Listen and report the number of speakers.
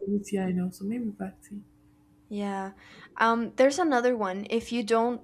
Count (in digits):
2